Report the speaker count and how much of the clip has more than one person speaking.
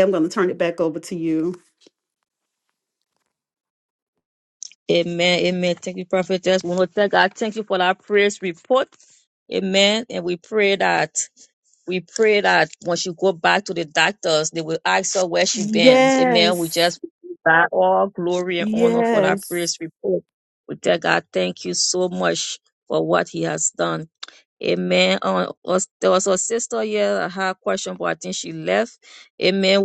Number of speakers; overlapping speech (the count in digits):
2, about 6%